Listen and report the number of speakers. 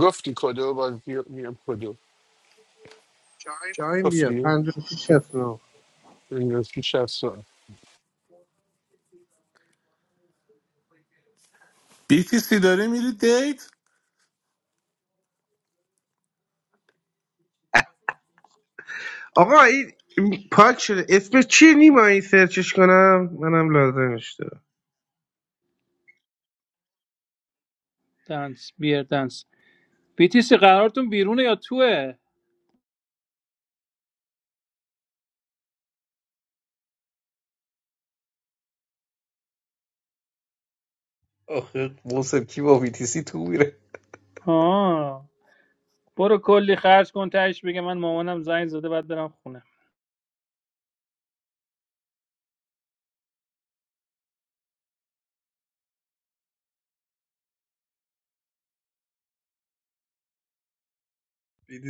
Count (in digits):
5